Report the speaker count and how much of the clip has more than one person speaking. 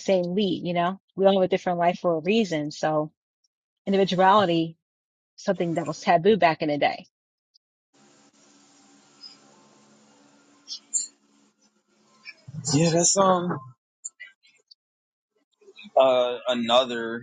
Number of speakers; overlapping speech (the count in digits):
2, no overlap